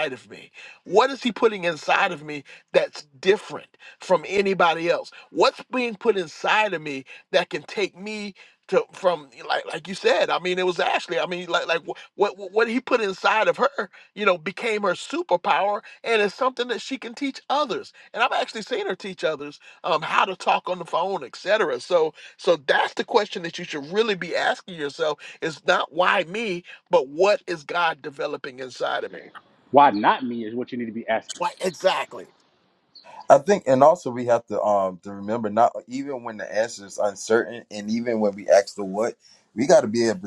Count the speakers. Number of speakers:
3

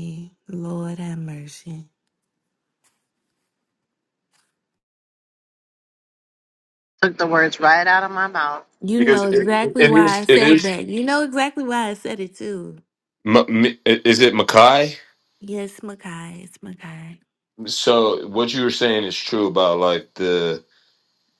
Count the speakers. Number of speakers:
3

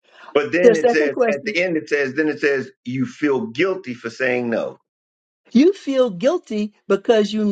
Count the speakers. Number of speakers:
2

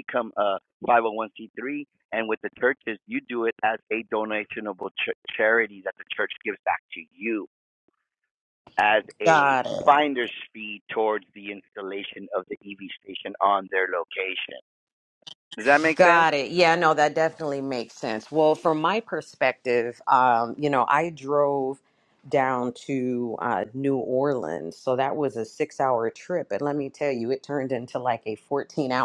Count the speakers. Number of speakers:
2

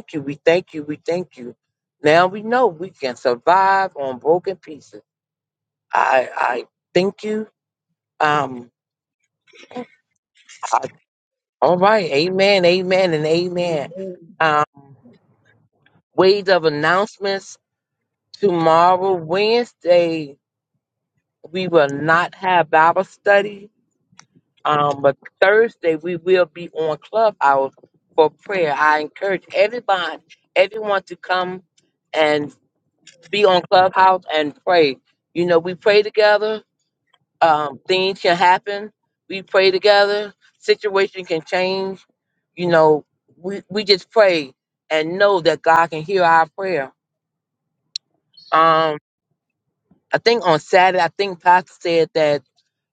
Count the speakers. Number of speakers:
1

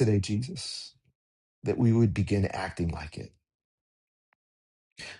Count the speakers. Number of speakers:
1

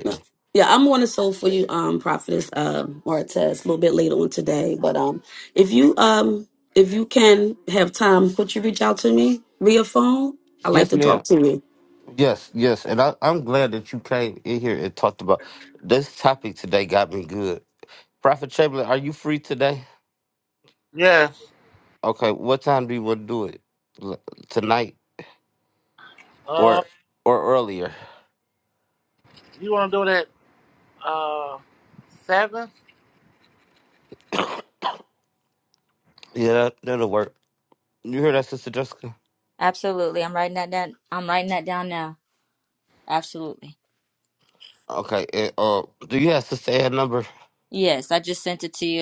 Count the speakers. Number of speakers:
4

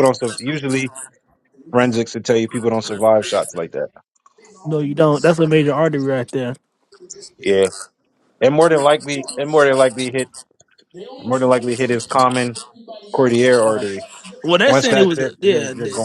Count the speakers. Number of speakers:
2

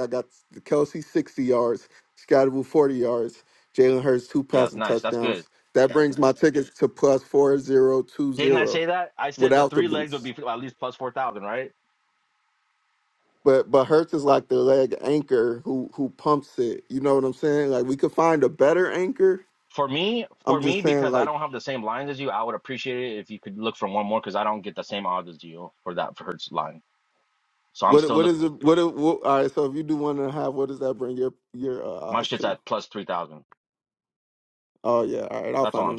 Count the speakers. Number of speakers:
2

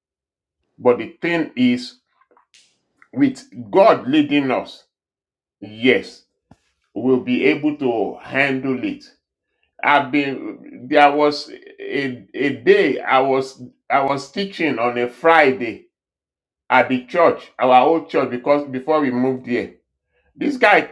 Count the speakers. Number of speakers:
1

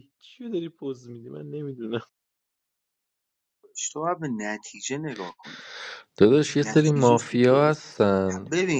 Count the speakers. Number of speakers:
3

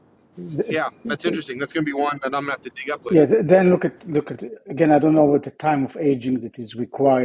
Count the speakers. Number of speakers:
2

